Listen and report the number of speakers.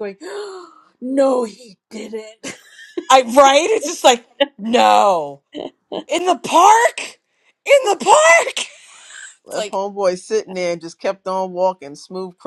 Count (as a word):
three